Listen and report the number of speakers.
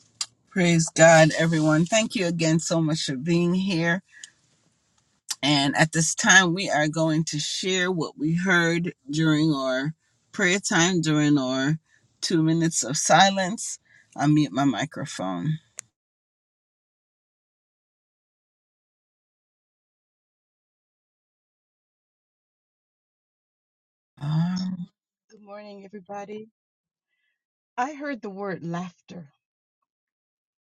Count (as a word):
two